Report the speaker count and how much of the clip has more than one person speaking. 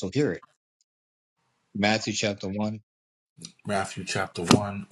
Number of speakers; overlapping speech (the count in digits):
2, no overlap